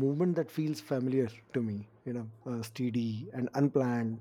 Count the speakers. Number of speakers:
1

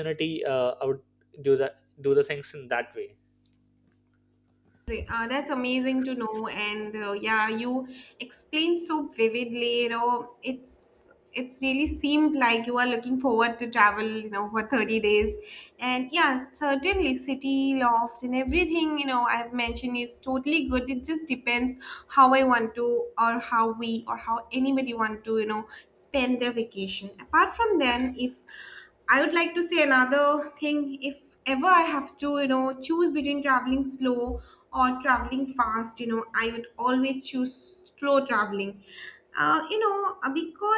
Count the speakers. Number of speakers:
2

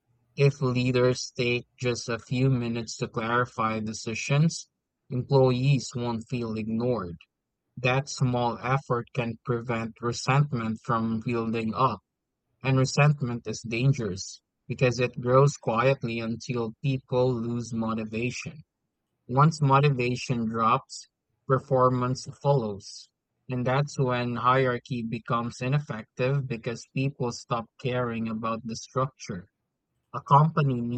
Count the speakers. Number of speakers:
1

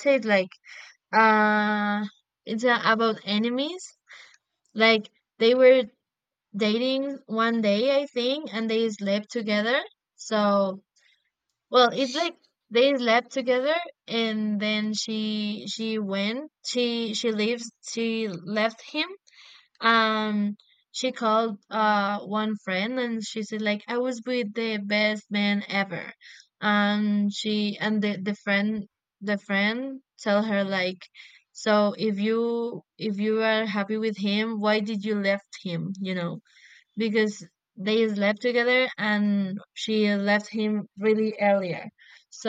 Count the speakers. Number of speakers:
1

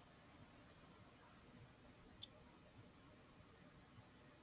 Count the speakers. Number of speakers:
0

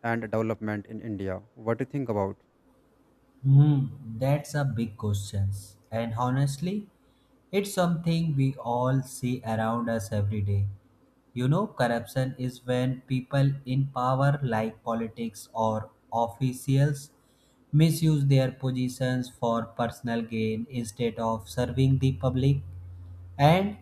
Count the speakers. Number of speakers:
2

